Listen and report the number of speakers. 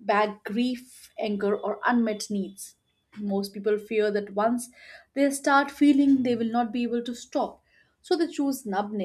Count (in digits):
1